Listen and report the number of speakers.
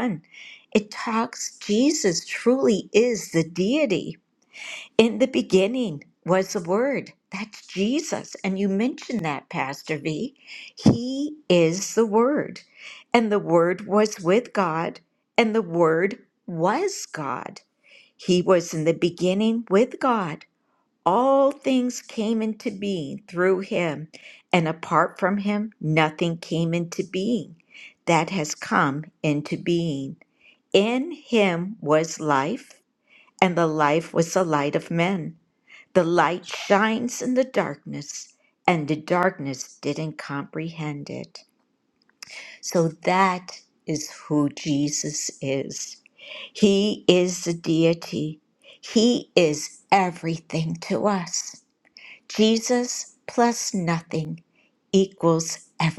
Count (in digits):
1